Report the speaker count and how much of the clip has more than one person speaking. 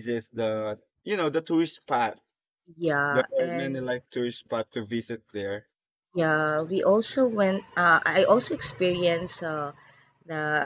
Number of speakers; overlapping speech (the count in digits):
2, about 6%